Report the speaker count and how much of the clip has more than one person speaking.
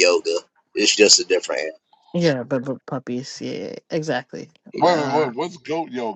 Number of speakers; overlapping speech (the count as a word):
three, about 8%